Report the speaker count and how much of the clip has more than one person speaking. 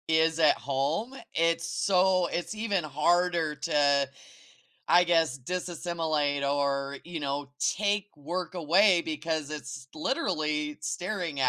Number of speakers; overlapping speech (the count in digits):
1, no overlap